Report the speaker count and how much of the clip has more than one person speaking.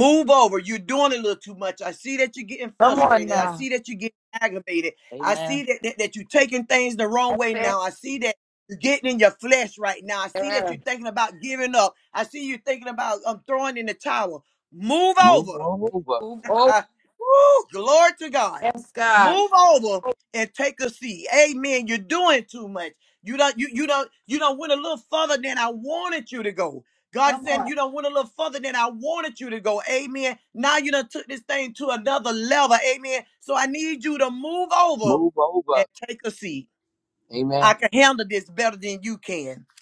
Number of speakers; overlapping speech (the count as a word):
three, about 9%